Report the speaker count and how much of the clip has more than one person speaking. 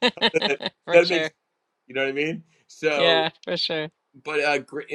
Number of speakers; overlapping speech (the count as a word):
two, about 12%